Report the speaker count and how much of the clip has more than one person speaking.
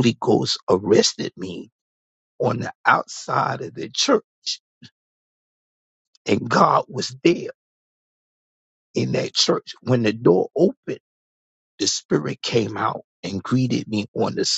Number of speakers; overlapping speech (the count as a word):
one, no overlap